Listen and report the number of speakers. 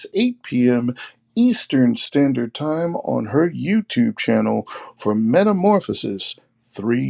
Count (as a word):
one